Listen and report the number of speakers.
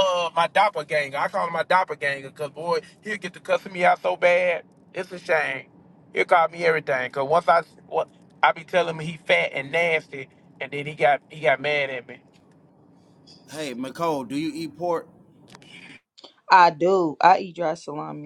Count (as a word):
three